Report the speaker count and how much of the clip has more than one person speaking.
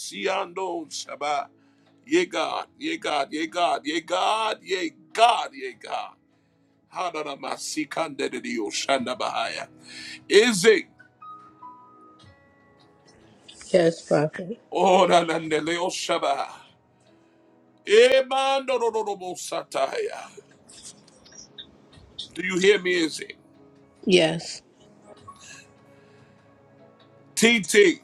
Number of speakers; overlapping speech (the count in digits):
2, no overlap